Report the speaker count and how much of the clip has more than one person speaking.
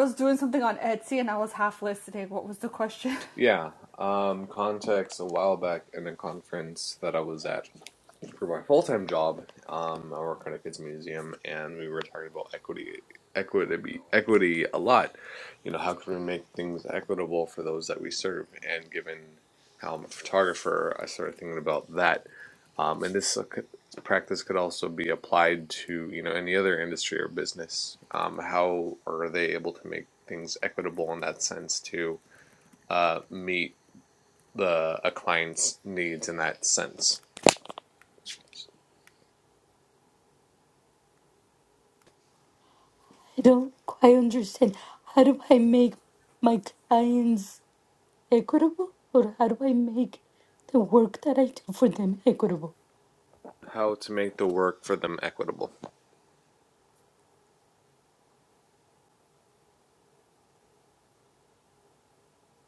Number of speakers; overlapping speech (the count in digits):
3, no overlap